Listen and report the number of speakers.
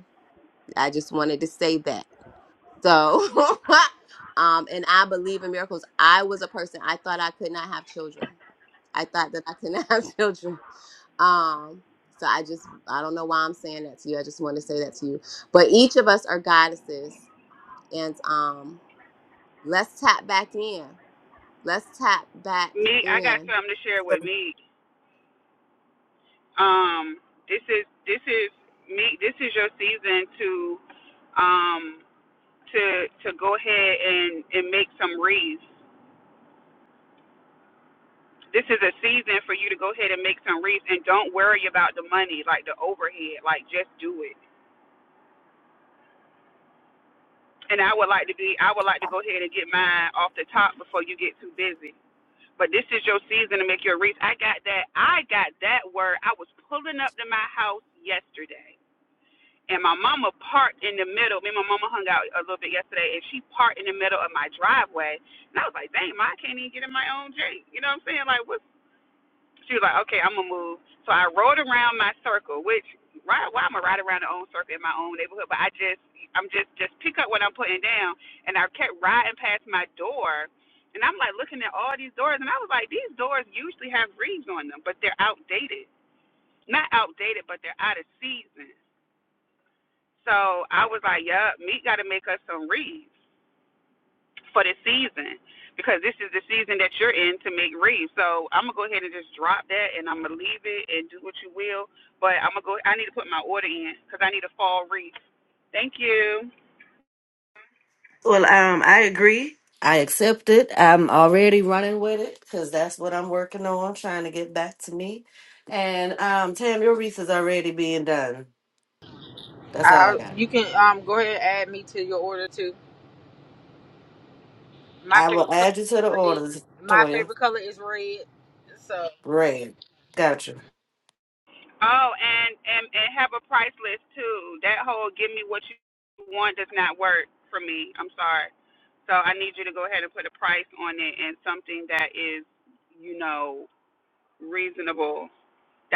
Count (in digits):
4